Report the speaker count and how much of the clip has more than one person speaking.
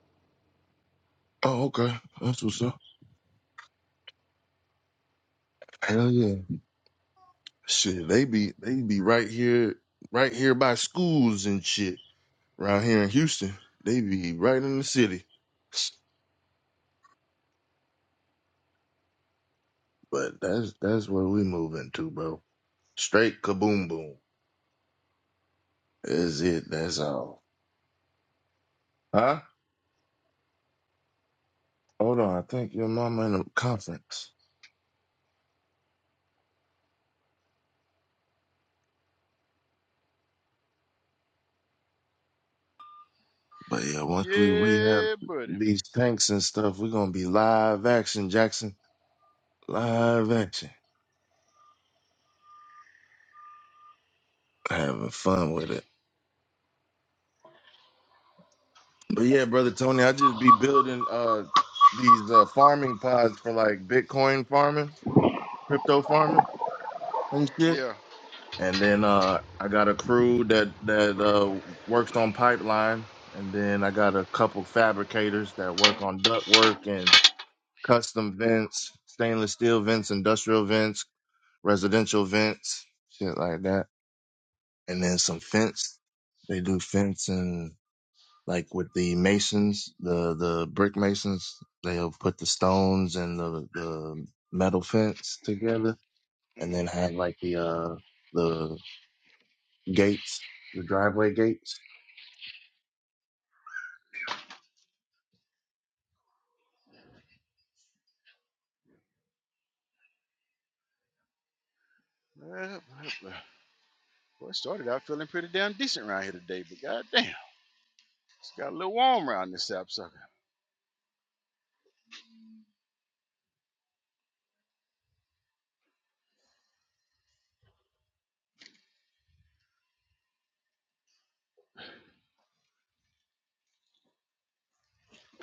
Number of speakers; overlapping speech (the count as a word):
two, about 1%